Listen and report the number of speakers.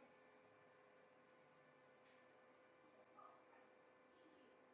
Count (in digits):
0